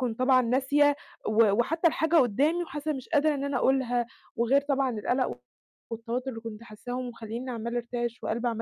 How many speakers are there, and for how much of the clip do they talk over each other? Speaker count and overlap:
one, no overlap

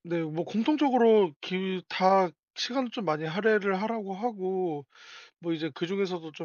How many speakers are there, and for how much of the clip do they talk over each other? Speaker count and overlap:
one, no overlap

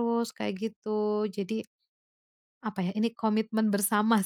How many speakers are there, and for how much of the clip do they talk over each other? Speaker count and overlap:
one, no overlap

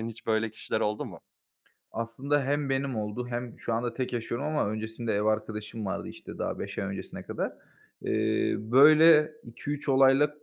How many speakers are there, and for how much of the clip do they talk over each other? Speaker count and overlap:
two, no overlap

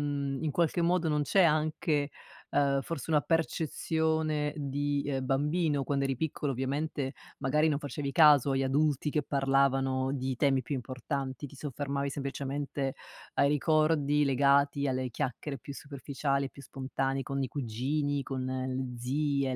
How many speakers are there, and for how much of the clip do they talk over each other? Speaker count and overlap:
one, no overlap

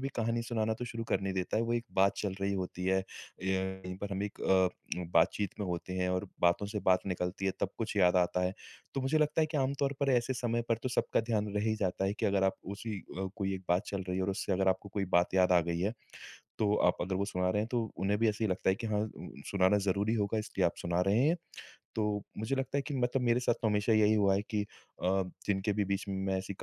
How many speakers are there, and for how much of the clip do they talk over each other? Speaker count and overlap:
one, no overlap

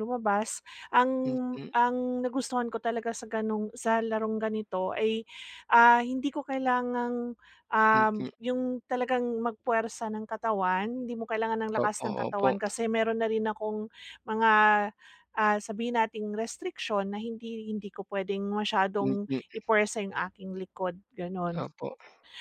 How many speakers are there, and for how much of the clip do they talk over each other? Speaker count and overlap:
two, about 7%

